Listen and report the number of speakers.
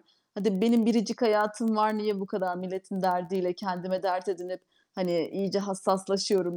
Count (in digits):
1